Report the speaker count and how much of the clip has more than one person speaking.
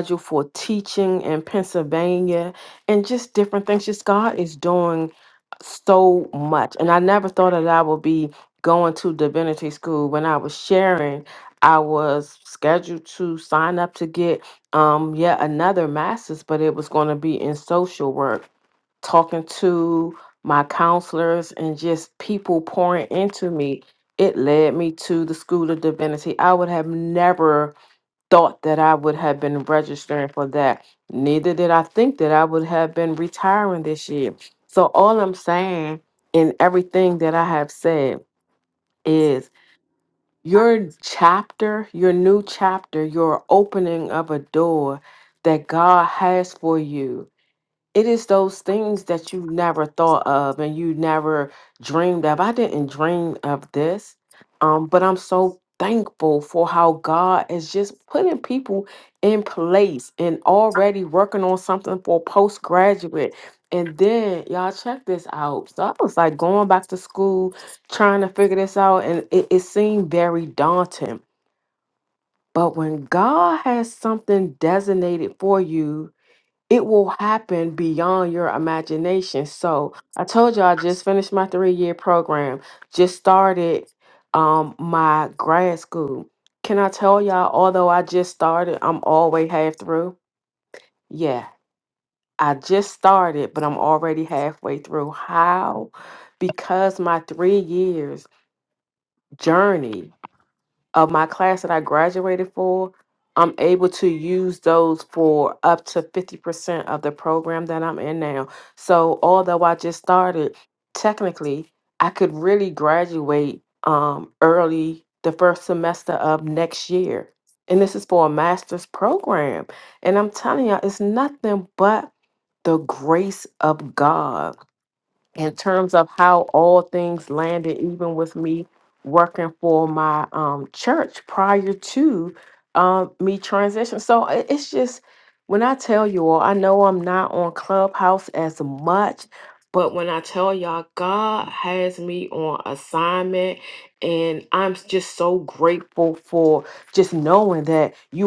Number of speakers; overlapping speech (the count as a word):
one, no overlap